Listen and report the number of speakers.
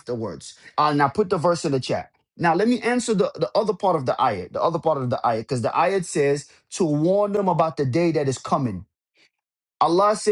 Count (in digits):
1